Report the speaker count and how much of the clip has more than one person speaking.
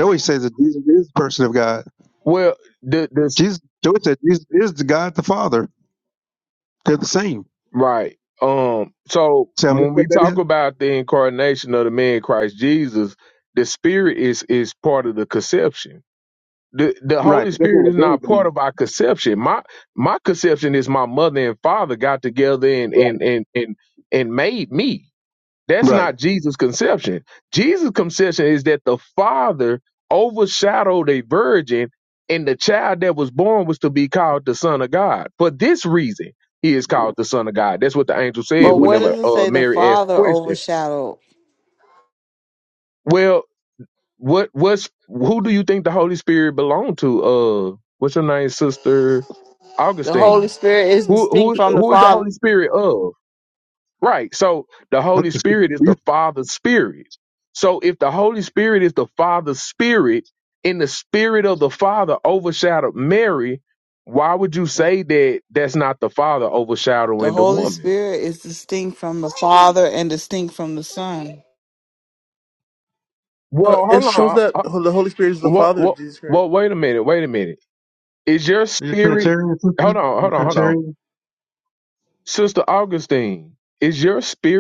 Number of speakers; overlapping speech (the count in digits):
4, about 12%